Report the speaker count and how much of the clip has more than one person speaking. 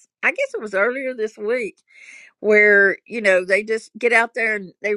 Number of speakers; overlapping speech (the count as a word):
one, no overlap